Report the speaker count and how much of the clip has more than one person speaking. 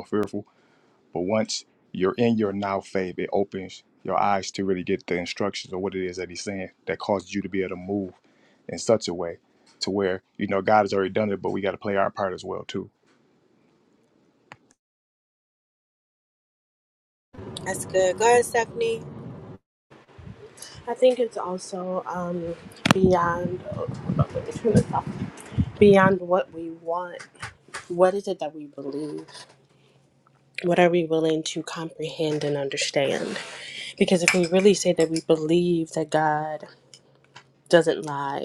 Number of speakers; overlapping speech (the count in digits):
3, no overlap